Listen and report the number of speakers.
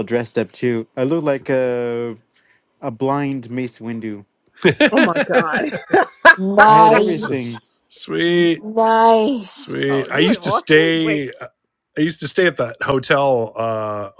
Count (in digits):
4